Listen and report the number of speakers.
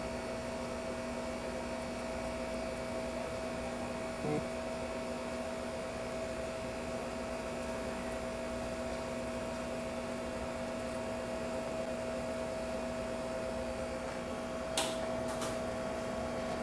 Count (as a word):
zero